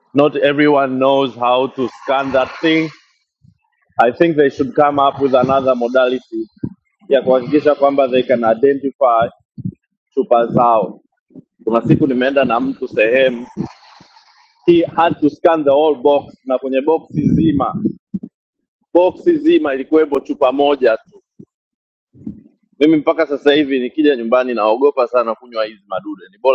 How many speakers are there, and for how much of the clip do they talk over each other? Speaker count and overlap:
1, no overlap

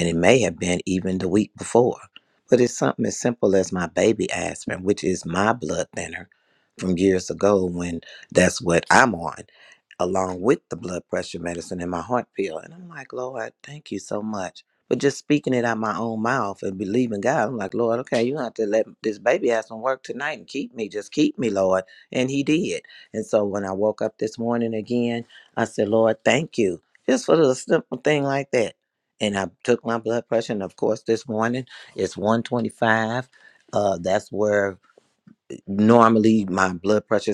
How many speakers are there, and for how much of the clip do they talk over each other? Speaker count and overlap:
1, no overlap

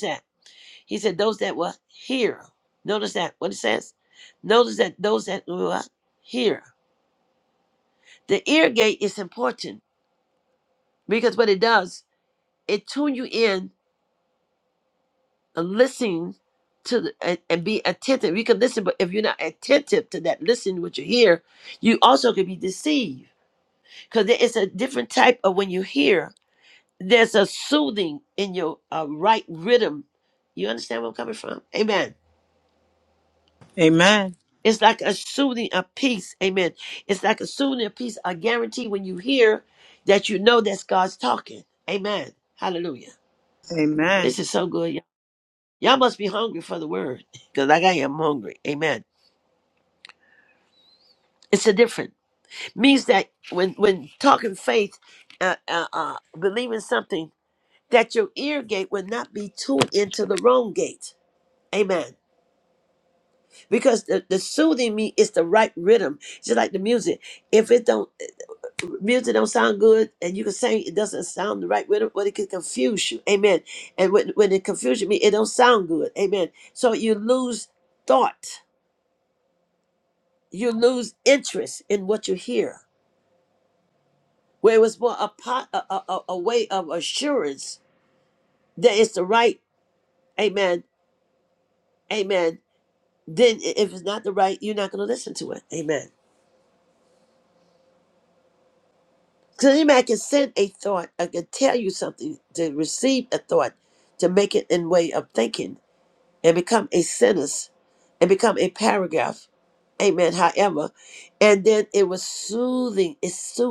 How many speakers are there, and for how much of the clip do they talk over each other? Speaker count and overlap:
2, under 1%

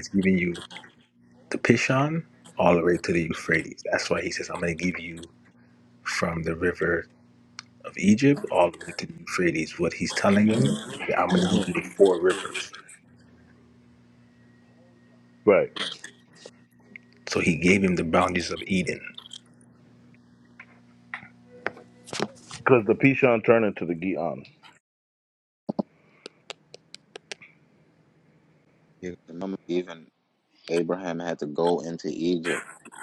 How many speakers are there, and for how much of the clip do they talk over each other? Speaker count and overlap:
3, about 1%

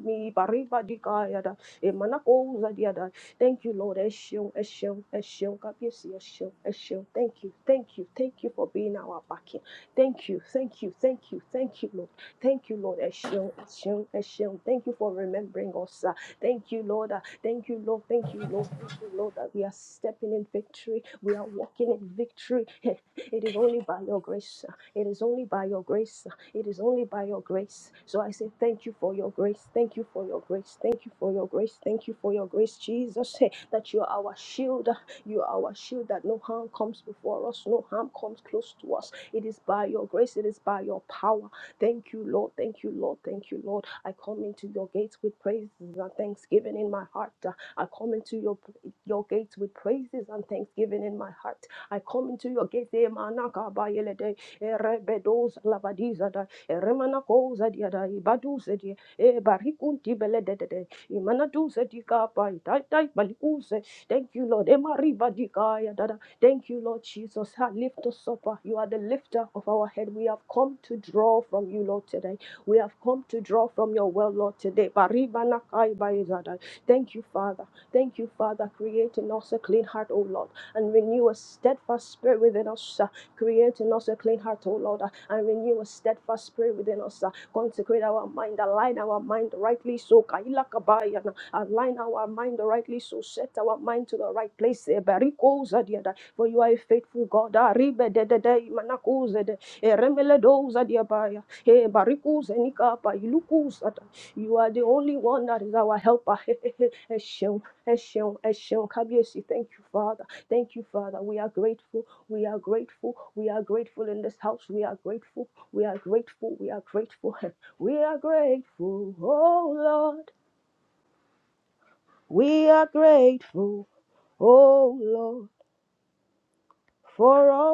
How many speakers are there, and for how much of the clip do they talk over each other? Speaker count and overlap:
1, no overlap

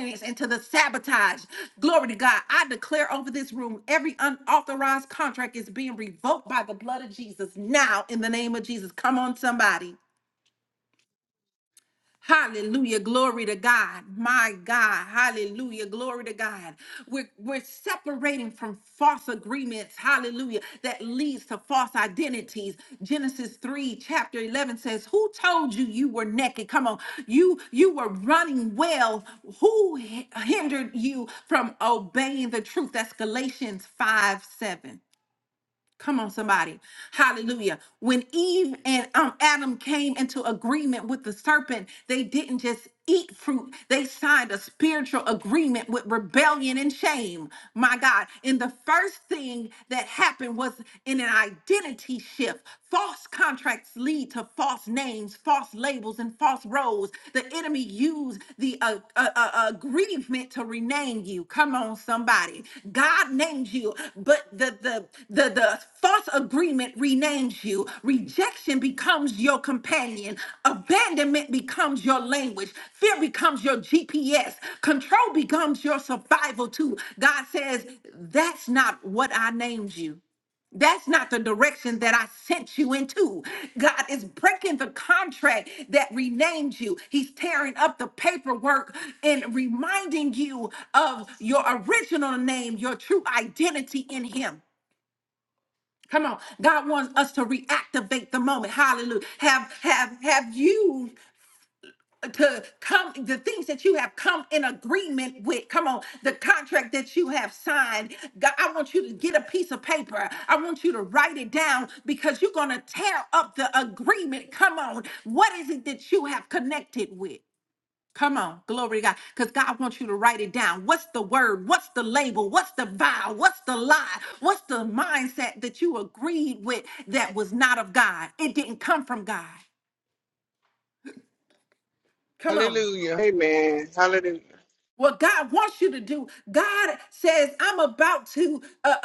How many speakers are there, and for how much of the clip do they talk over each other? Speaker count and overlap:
2, under 1%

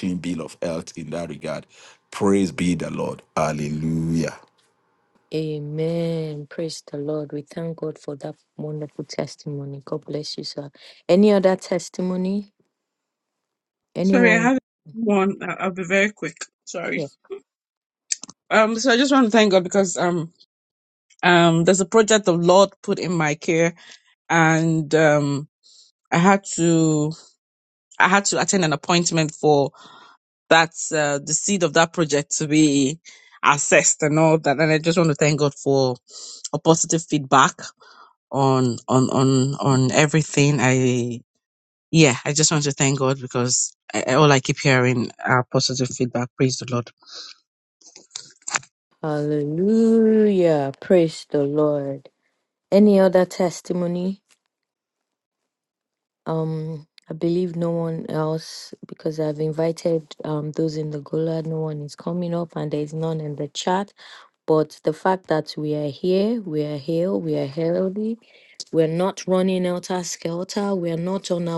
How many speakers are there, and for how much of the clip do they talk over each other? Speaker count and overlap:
3, about 1%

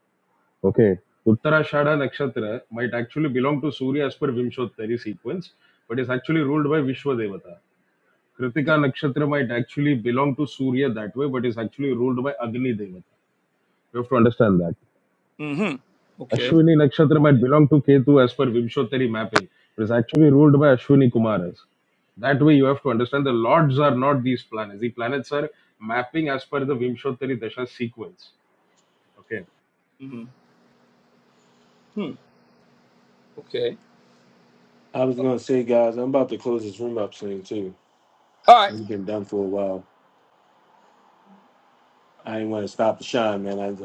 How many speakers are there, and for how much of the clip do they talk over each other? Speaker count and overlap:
3, about 1%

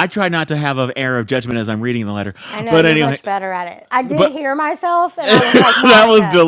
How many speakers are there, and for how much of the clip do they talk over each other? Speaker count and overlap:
2, about 21%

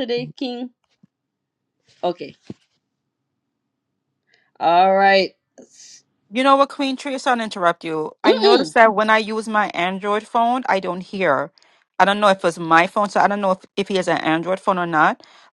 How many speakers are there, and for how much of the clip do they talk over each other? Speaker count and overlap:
2, about 3%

